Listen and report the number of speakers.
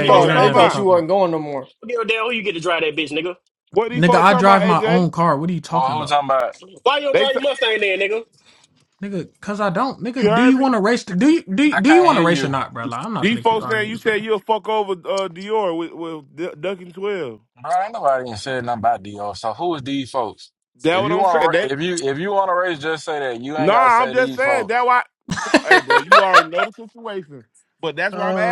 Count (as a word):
five